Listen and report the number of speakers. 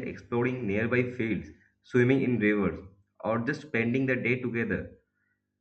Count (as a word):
one